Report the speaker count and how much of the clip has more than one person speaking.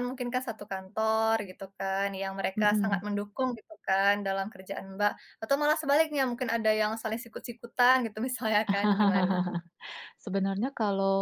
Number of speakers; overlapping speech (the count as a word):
two, about 4%